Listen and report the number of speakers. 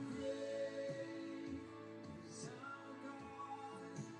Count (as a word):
zero